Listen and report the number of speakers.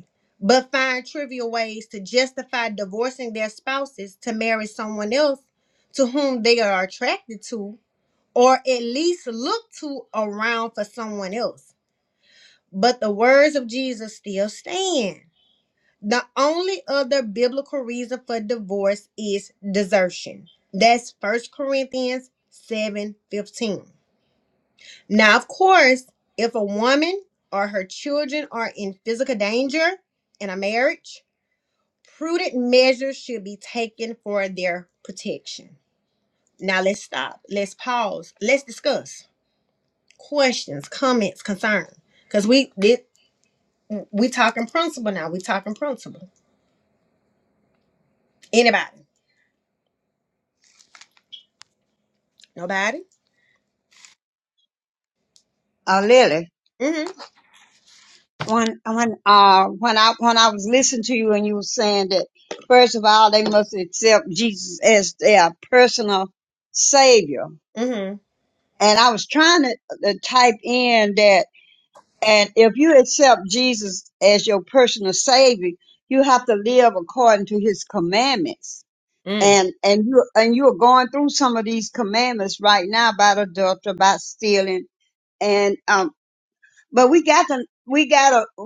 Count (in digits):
2